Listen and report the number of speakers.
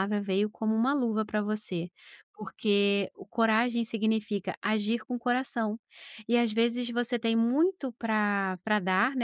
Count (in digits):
1